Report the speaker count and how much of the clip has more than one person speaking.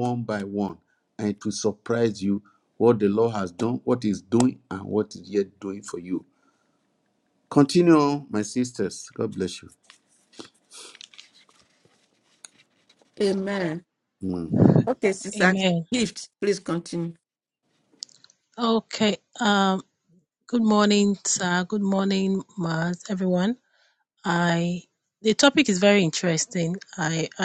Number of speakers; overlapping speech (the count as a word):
three, about 1%